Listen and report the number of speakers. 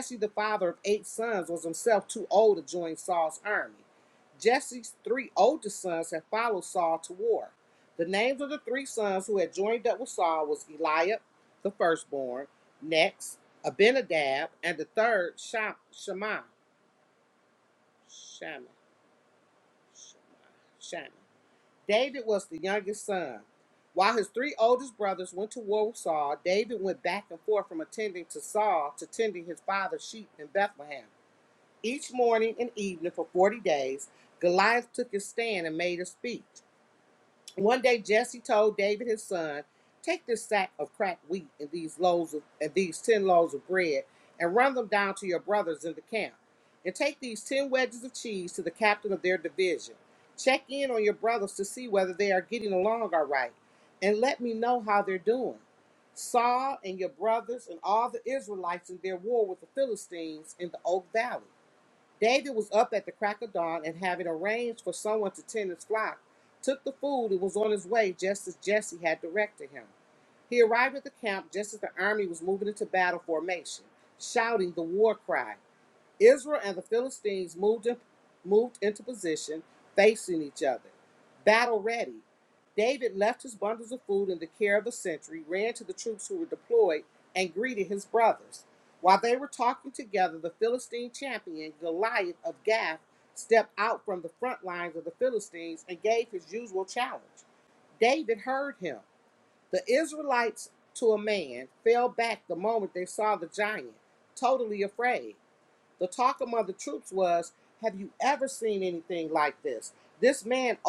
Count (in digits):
1